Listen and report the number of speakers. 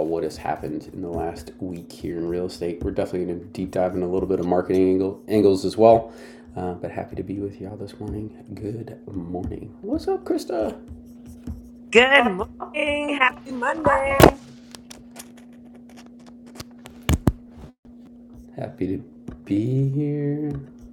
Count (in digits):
2